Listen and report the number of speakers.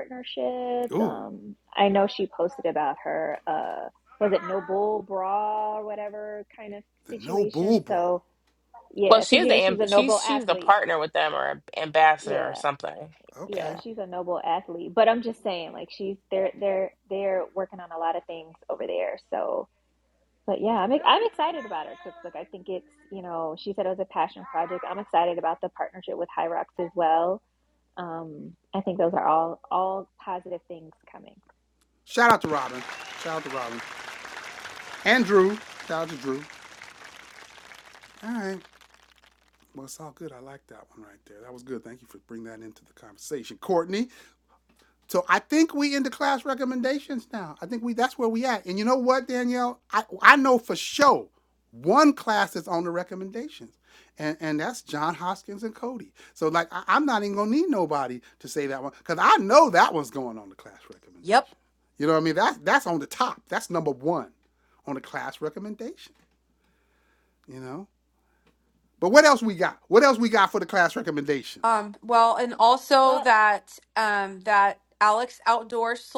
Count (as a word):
four